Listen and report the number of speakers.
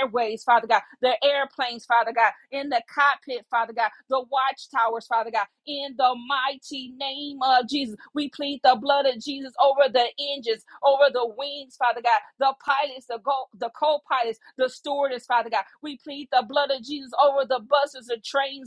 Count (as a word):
one